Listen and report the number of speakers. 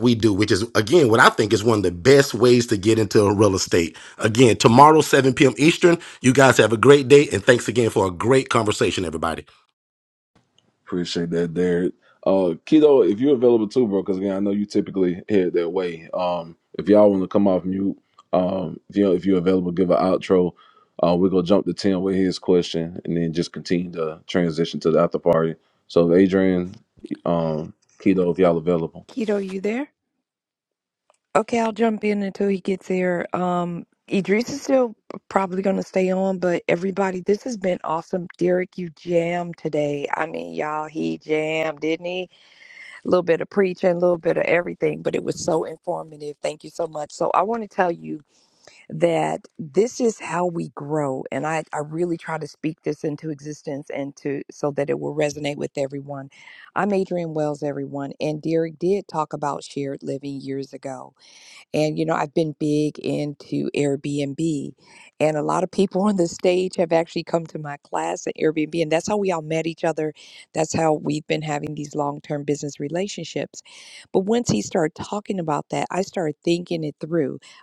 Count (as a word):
three